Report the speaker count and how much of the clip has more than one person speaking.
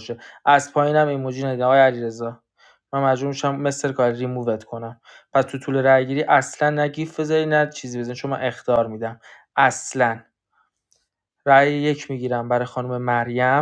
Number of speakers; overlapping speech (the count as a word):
one, no overlap